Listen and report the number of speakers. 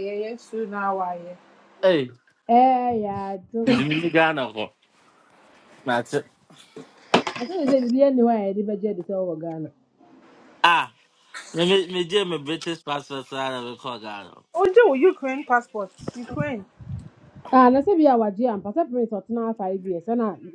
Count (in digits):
3